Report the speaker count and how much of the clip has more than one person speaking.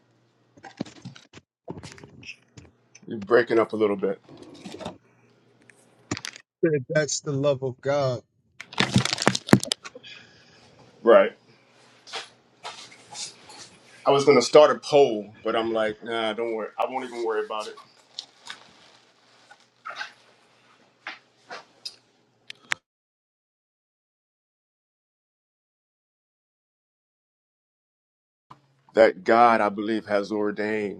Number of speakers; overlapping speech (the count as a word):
two, no overlap